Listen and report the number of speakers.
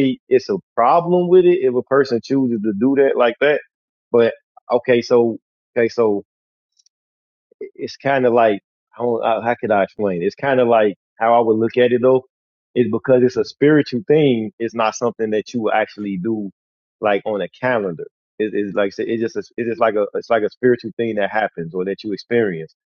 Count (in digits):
1